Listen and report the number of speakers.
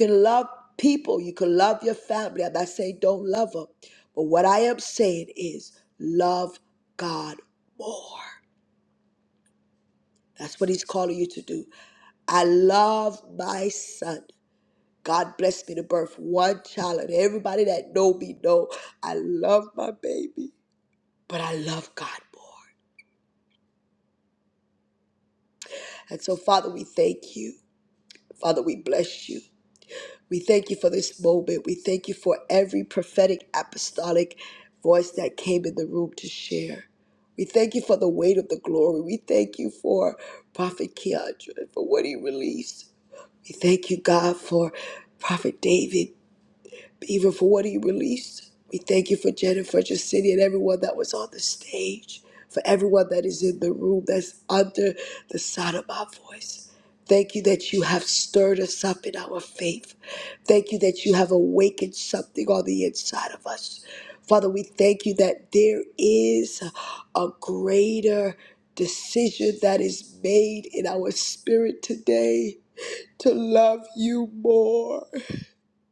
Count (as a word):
one